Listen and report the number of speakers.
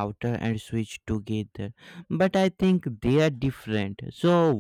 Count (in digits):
1